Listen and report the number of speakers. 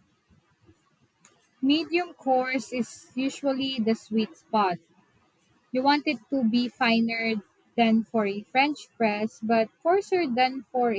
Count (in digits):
1